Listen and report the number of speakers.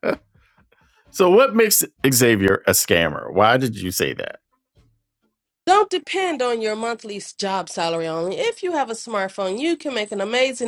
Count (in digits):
2